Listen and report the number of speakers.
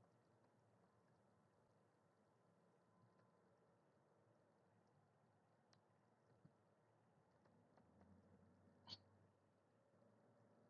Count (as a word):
zero